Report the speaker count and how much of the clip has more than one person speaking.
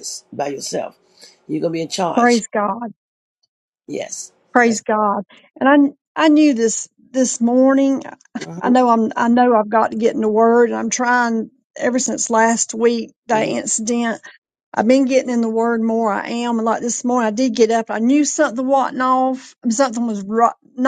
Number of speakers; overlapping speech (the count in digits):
2, about 4%